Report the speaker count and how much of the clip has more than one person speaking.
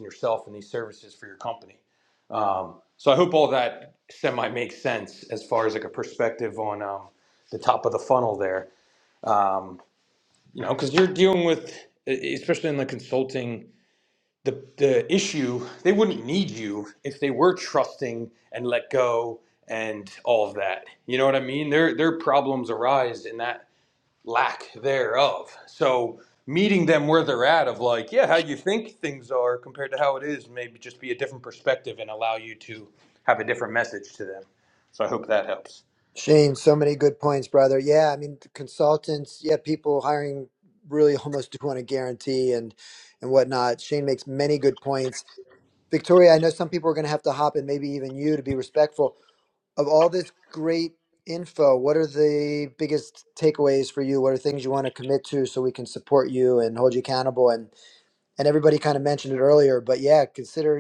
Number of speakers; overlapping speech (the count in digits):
2, no overlap